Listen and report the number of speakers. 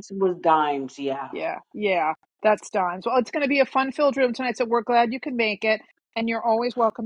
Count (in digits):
2